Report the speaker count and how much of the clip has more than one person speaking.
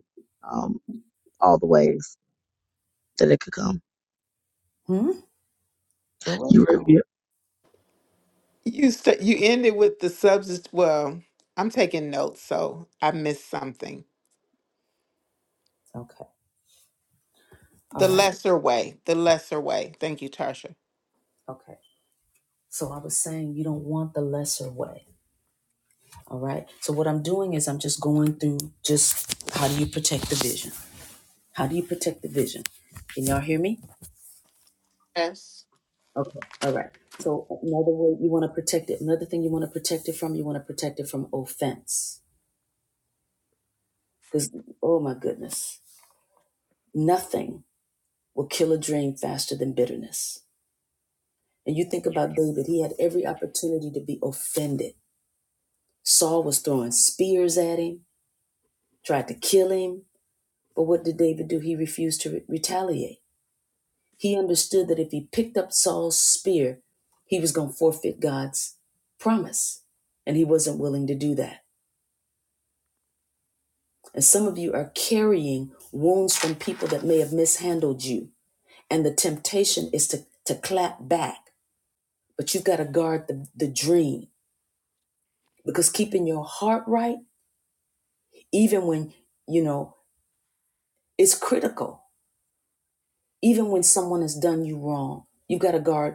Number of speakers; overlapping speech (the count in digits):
3, about 1%